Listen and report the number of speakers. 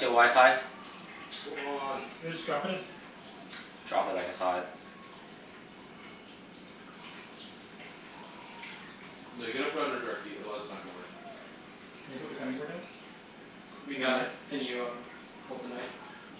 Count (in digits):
4